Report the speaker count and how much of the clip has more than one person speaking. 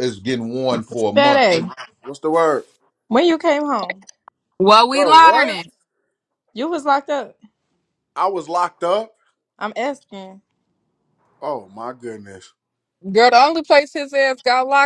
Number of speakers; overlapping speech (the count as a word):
four, about 6%